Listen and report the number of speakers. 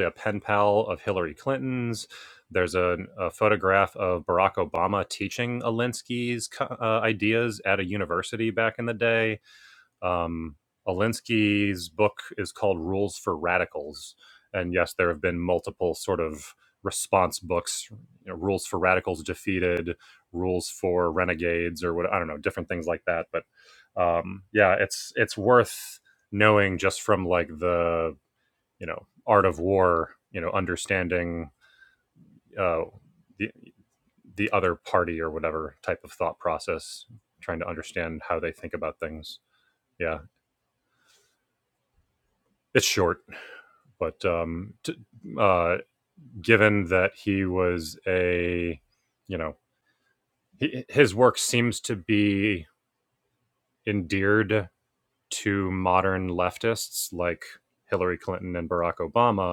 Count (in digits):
1